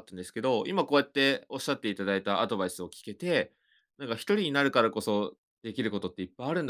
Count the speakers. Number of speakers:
one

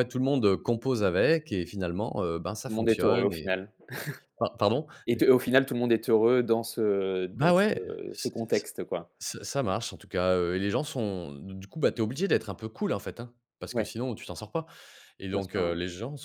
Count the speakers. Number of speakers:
two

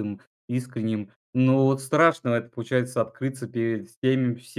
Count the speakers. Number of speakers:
one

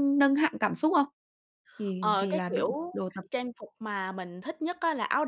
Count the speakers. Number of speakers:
two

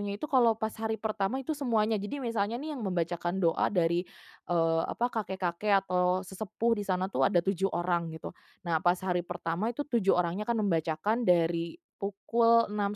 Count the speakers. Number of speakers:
one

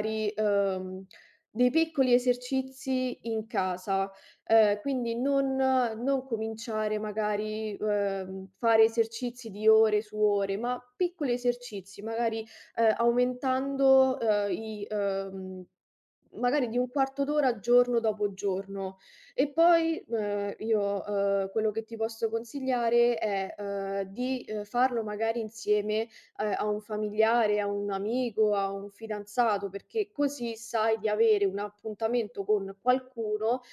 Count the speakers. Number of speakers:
one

